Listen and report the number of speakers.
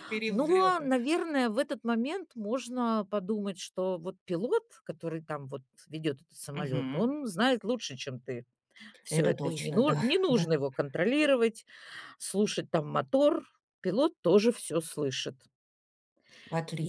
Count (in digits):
2